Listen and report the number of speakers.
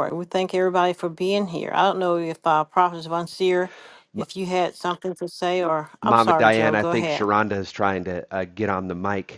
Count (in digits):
2